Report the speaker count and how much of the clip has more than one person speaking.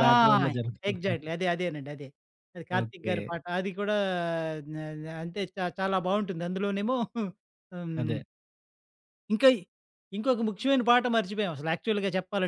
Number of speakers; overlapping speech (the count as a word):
two, about 10%